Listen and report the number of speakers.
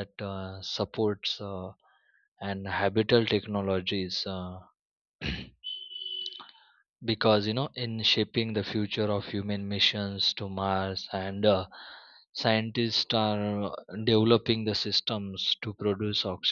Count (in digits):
1